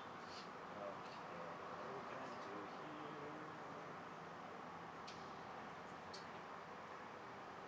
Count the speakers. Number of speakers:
1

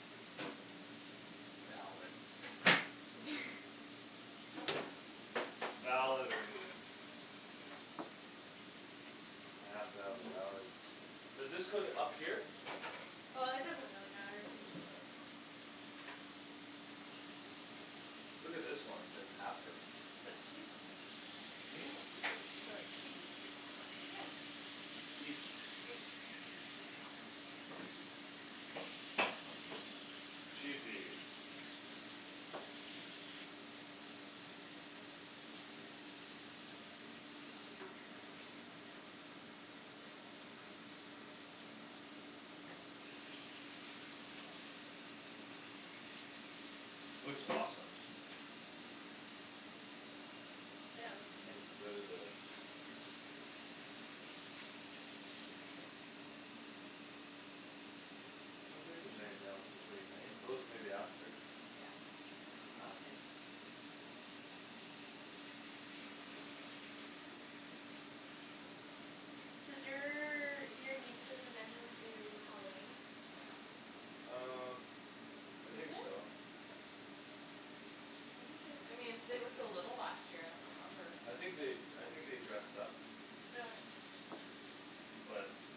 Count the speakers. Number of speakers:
3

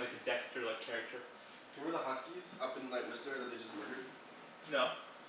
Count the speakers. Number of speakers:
2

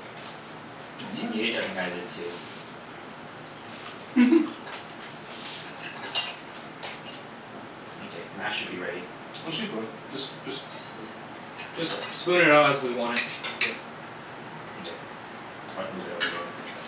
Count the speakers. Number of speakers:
3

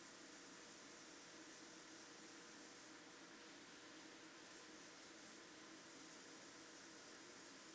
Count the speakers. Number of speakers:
0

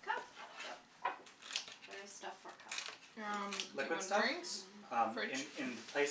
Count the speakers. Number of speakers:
3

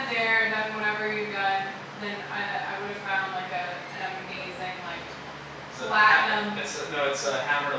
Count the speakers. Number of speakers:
2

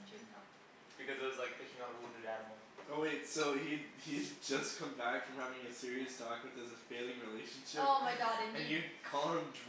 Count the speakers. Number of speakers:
3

